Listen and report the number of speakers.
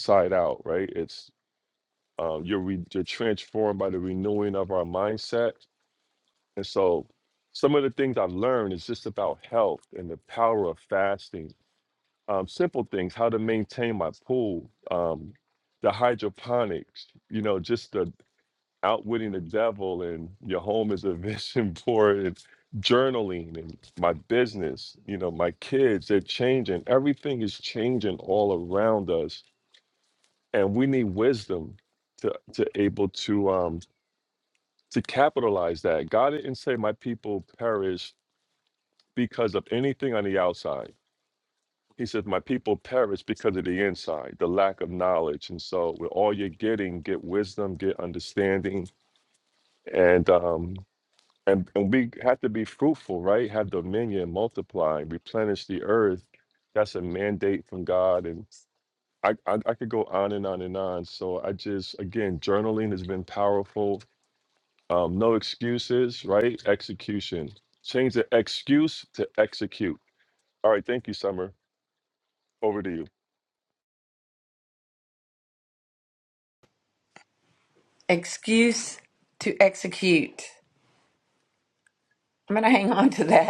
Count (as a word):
two